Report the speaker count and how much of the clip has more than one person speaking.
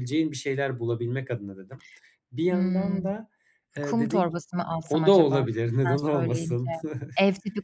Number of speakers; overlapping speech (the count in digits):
2, about 34%